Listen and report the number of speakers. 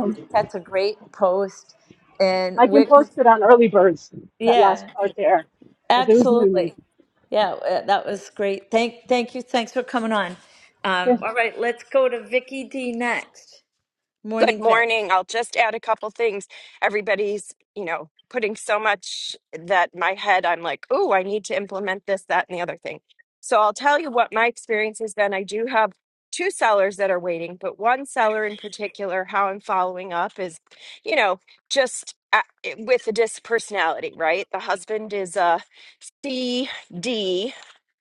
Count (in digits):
3